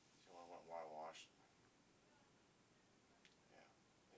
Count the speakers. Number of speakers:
1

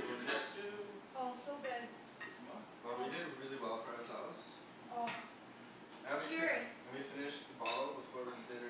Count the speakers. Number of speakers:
3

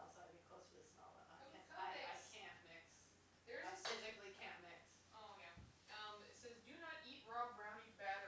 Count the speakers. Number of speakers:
2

